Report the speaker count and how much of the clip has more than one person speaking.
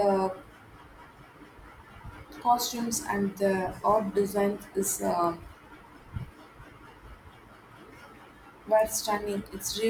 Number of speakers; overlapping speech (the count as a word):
one, no overlap